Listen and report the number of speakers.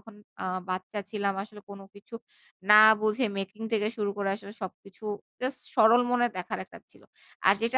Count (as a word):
one